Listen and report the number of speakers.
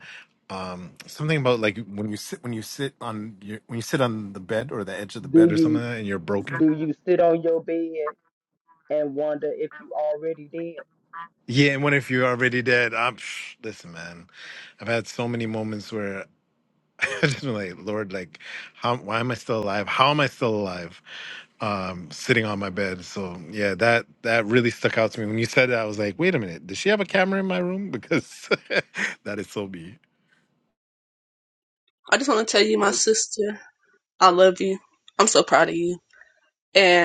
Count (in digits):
3